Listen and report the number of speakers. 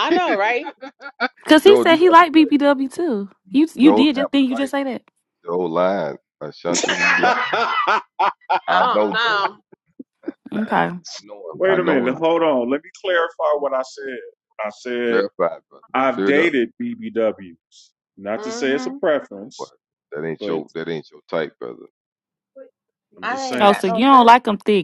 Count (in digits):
4